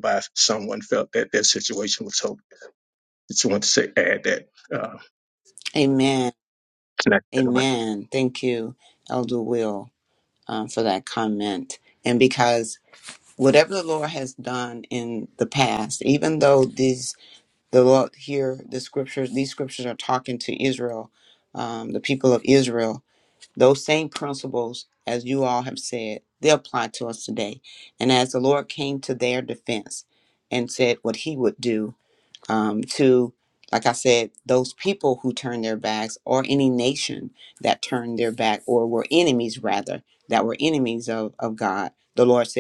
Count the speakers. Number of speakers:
2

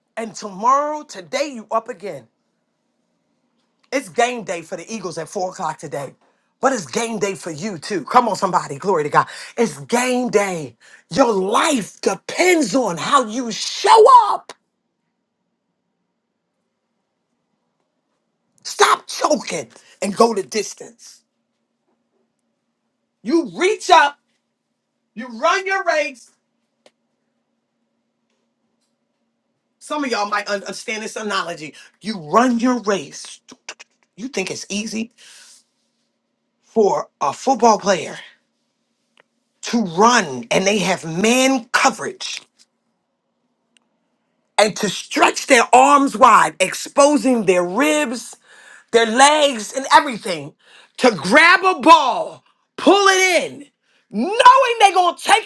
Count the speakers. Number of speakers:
1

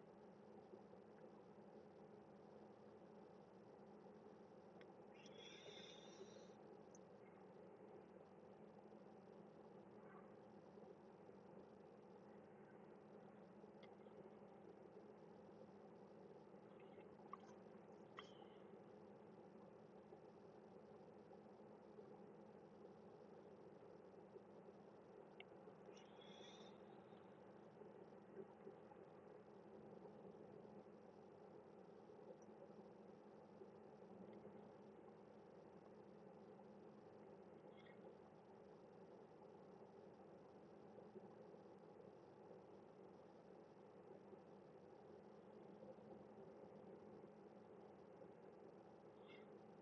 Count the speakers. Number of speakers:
0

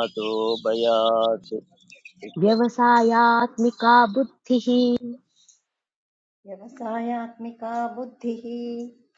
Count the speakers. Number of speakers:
3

